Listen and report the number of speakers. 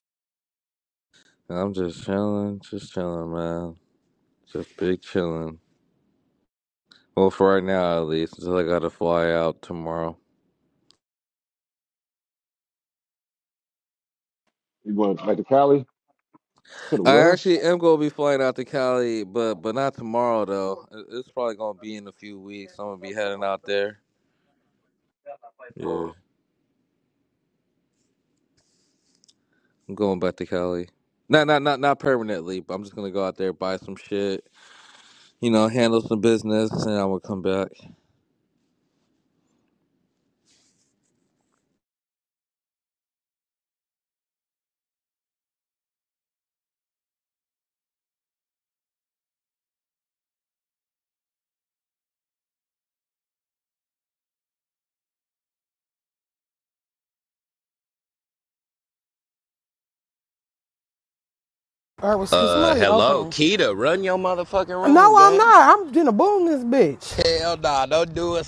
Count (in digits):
4